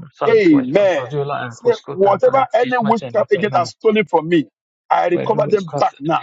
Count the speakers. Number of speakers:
two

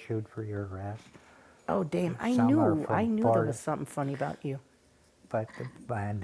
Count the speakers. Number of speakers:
two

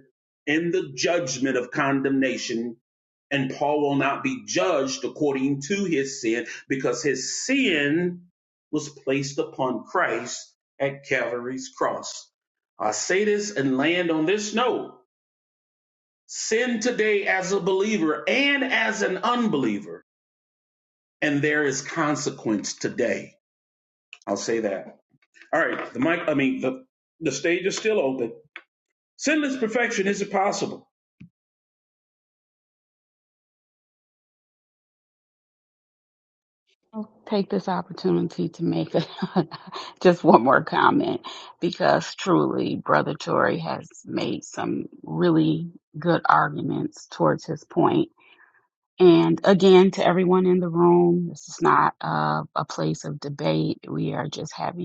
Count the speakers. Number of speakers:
two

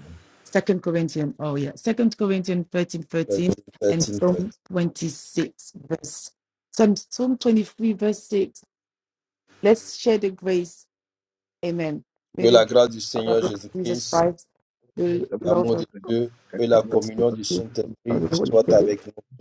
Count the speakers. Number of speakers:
two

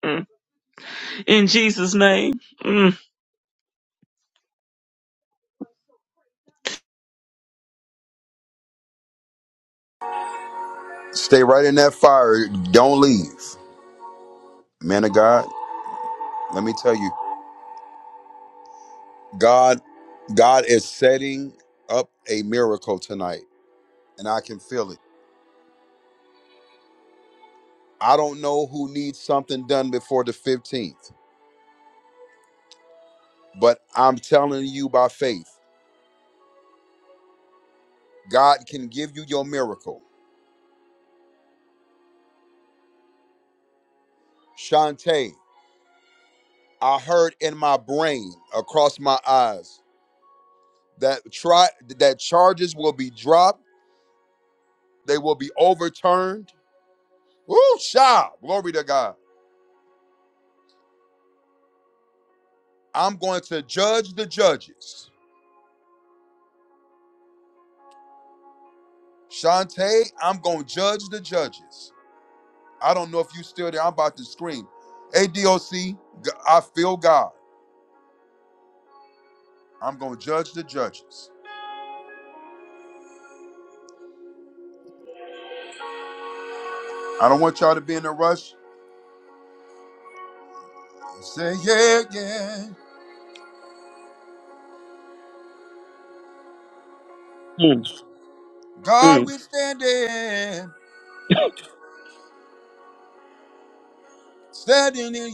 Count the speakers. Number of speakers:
two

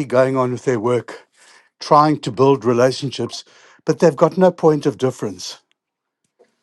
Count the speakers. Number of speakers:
one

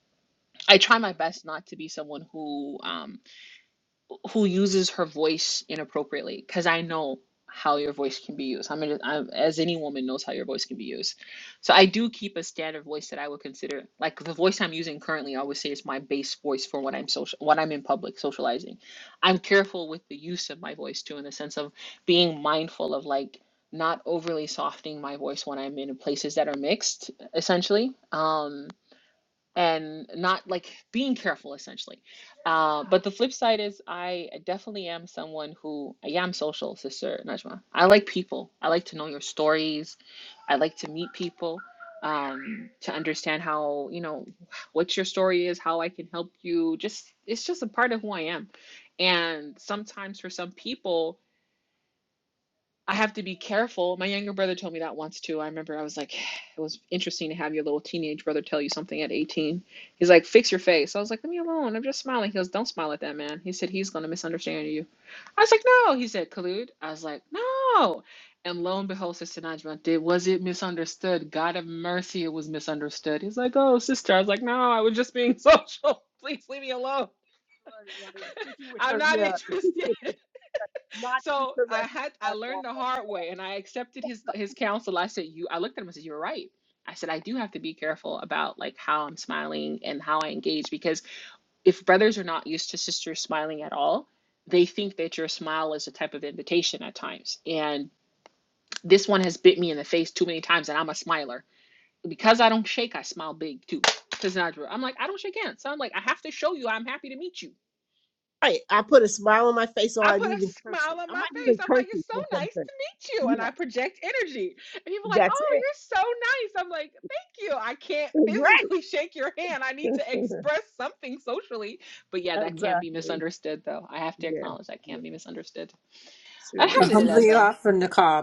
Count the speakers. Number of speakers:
three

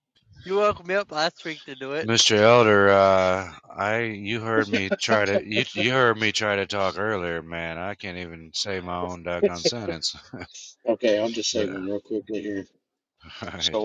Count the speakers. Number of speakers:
three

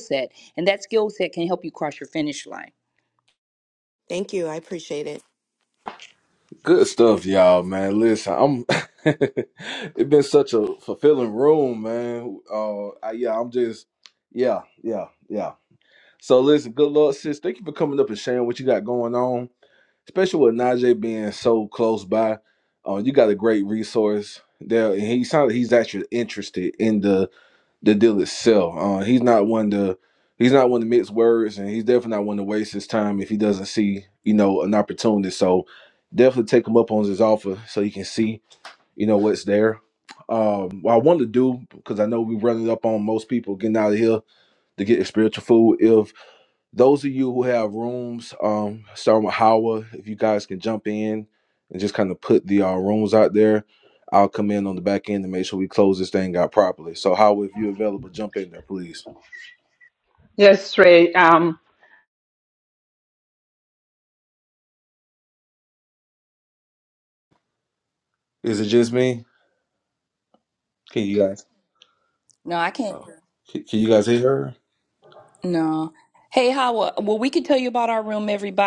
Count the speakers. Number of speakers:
four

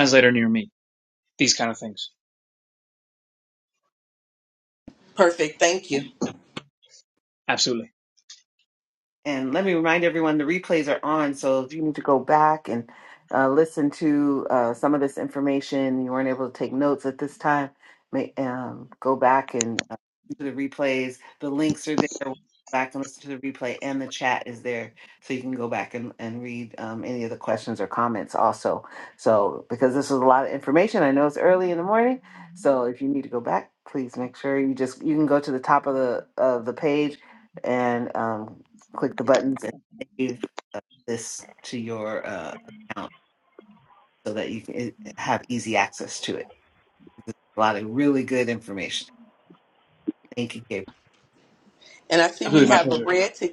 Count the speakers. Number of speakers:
three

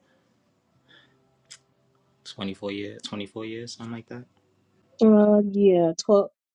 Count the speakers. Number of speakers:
two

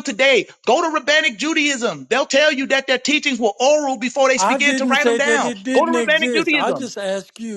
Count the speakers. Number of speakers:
two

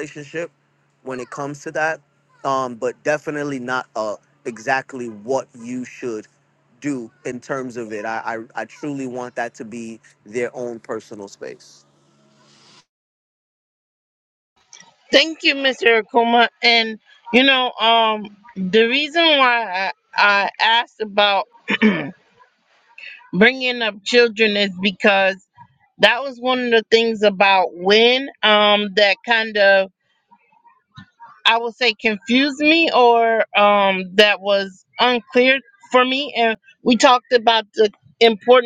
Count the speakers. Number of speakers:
two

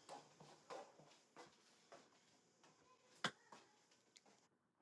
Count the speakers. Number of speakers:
zero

